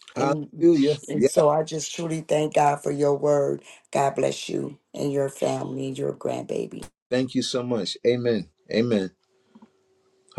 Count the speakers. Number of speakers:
two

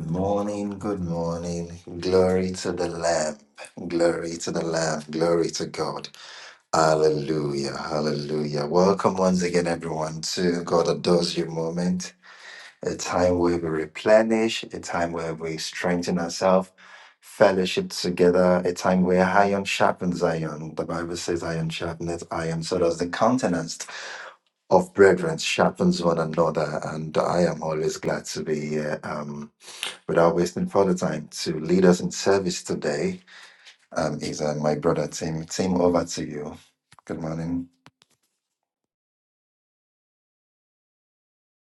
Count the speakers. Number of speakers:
one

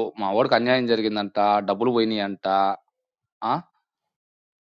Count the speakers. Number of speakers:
one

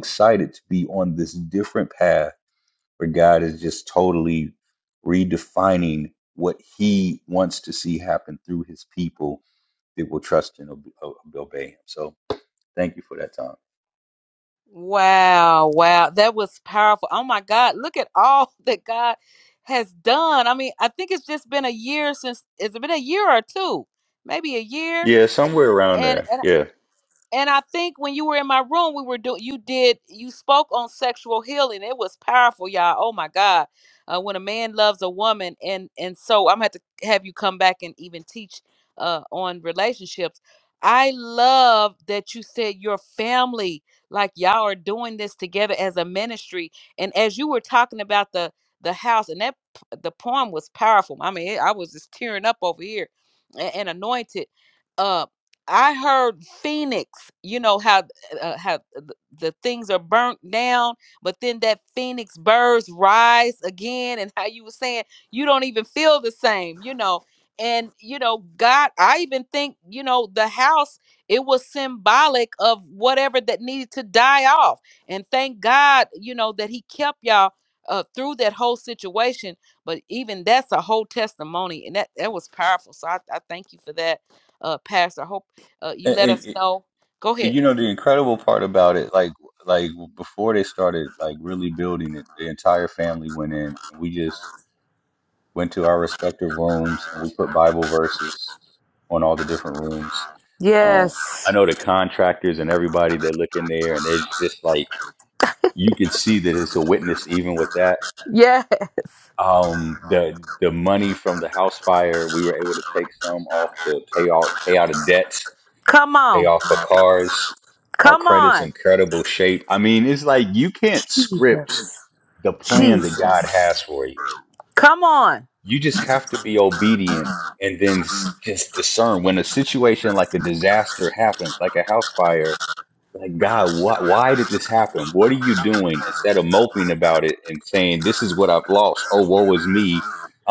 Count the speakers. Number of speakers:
two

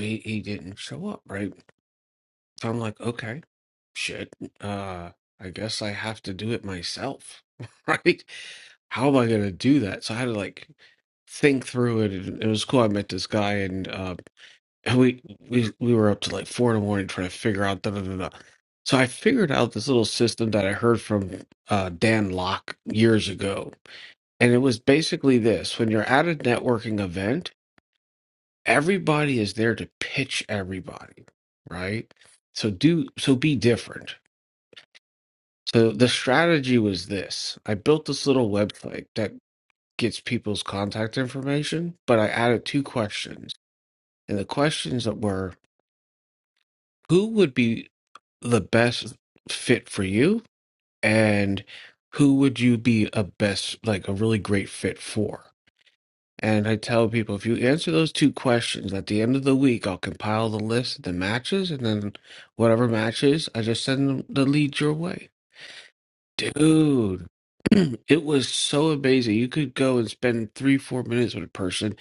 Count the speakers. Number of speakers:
one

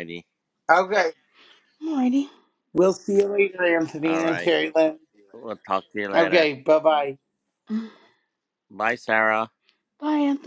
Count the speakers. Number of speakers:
three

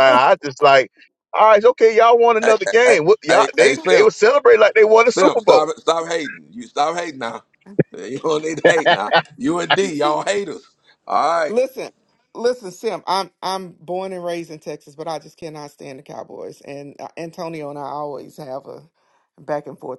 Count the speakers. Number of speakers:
three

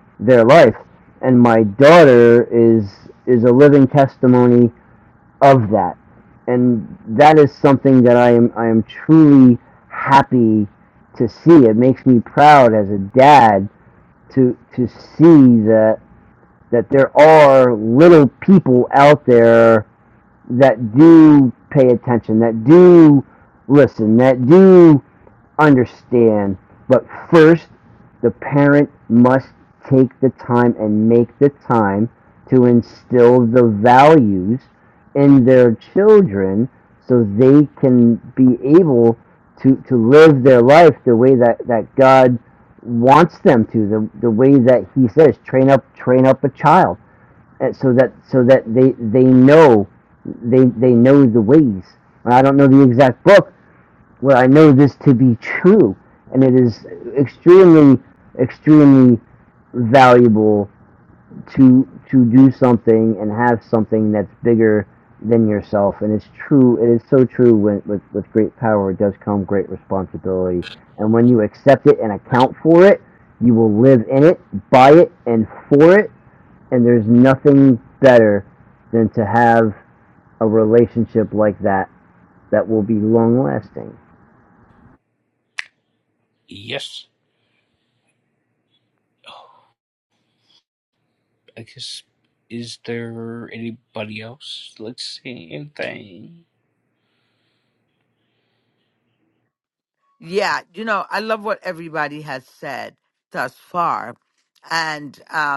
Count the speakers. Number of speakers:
three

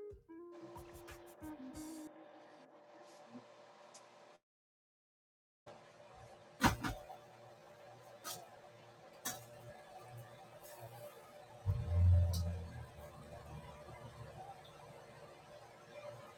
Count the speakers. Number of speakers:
zero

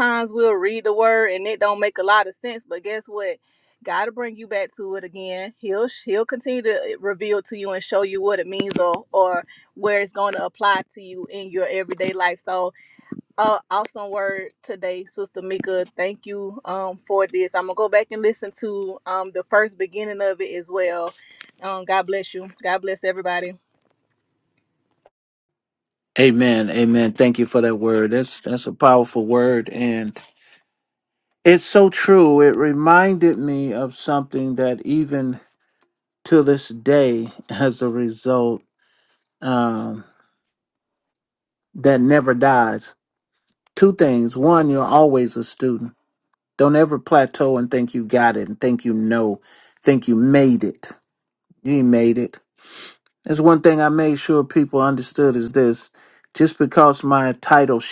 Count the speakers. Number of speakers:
two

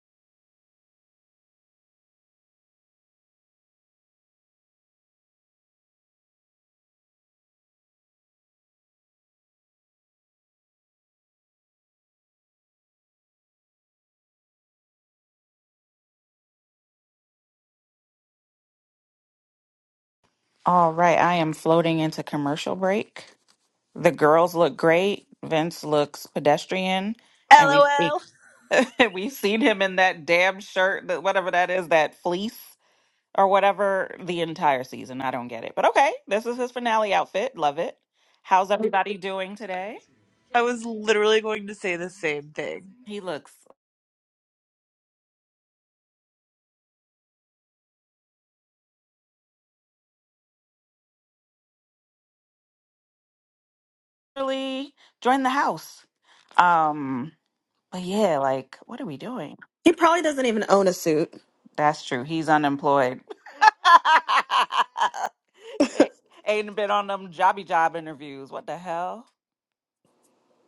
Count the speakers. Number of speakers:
three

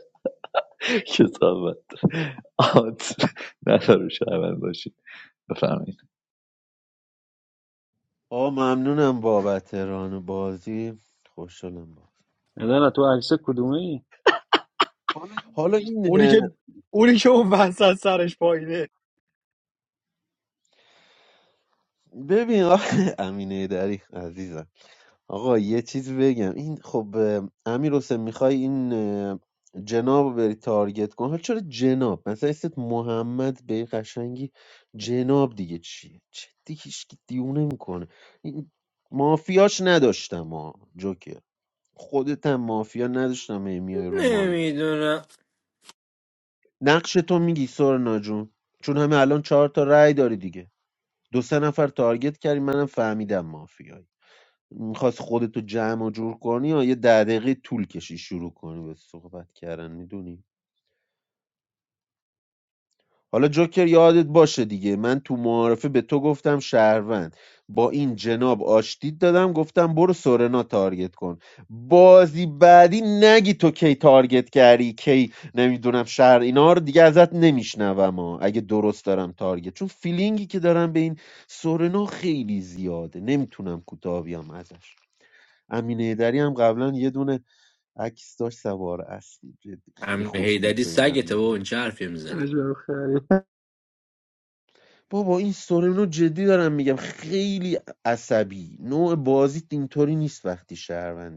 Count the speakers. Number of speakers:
five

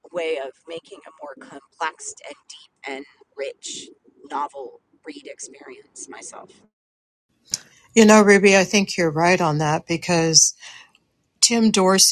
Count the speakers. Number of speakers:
two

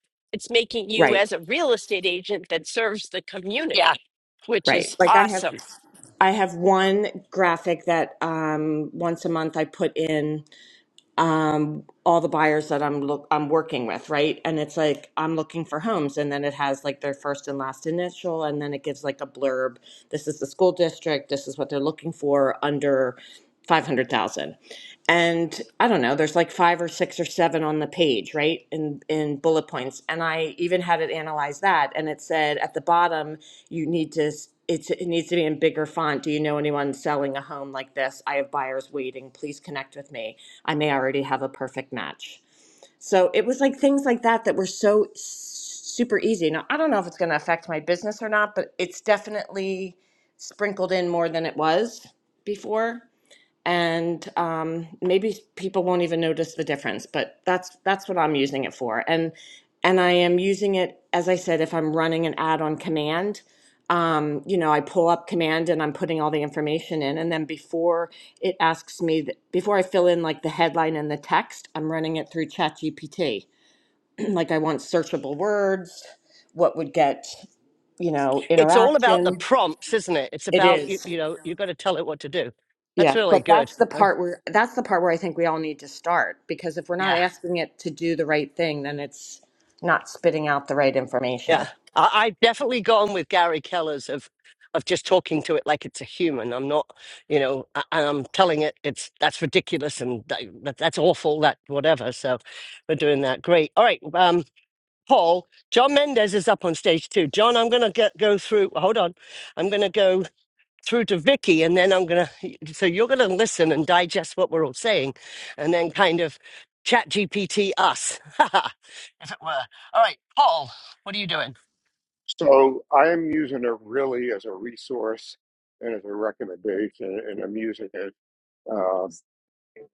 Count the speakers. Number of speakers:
four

